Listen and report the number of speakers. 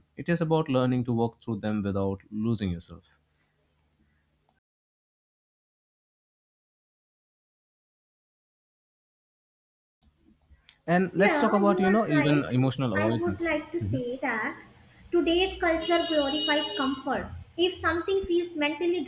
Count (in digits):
2